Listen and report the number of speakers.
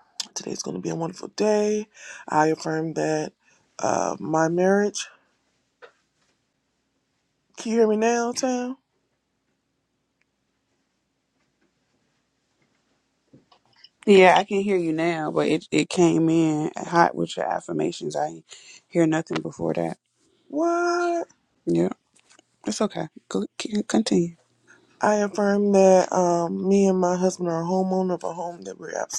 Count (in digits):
2